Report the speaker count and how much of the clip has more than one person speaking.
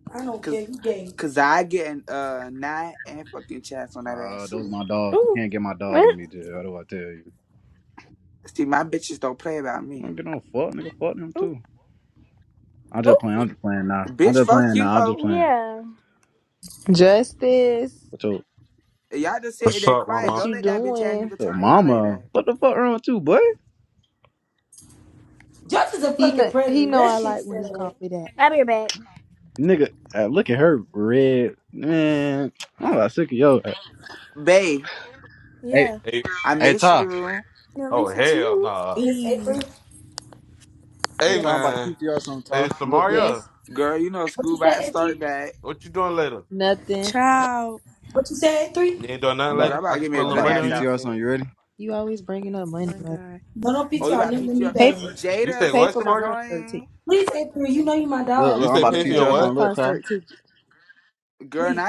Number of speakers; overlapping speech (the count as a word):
seven, about 30%